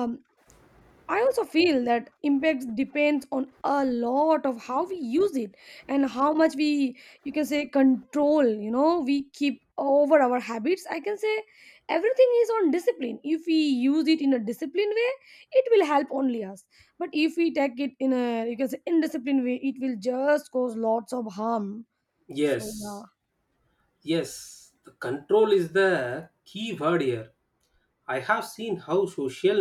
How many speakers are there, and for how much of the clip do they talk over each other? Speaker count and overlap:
2, under 1%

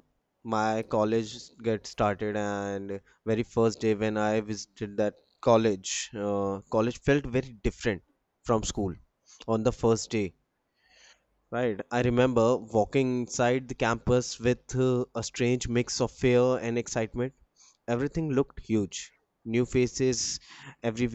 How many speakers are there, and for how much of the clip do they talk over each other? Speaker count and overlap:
1, no overlap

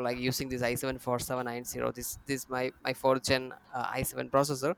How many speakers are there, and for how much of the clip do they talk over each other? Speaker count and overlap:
1, no overlap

